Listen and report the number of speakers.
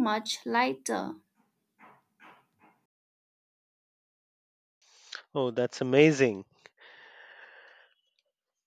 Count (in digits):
2